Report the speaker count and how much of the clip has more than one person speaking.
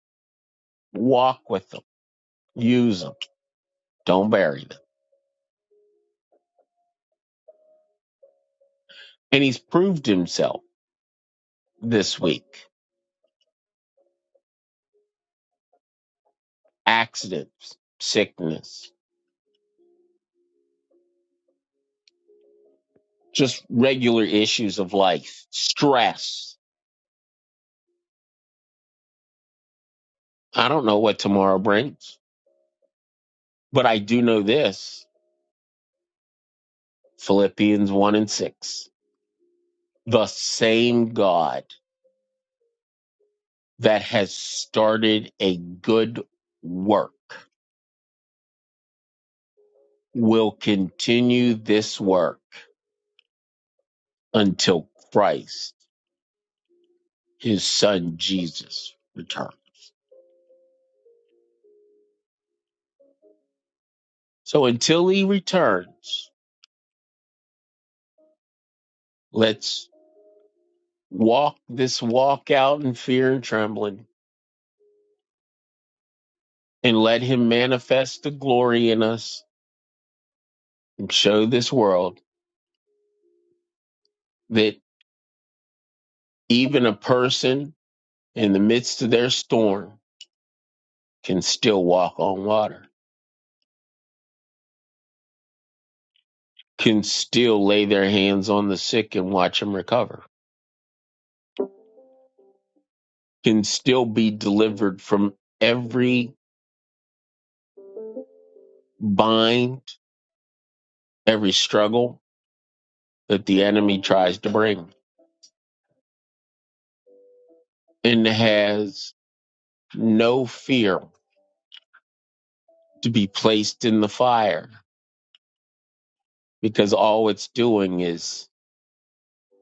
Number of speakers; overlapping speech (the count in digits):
1, no overlap